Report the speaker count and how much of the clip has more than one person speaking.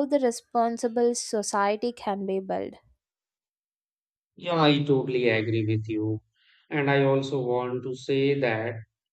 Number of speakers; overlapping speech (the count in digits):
2, no overlap